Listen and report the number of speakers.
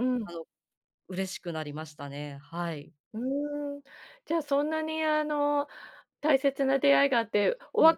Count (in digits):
2